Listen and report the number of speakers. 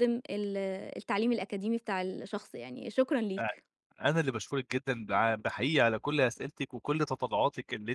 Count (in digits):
2